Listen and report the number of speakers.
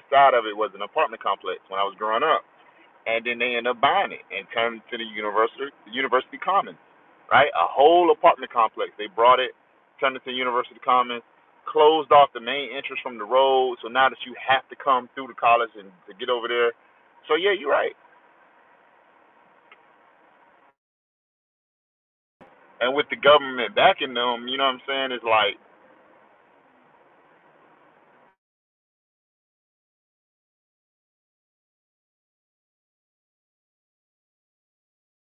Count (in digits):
1